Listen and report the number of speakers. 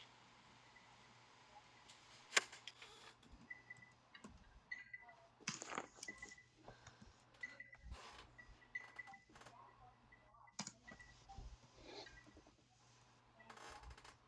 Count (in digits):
0